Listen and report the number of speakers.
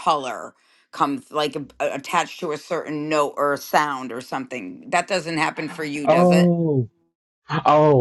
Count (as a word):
two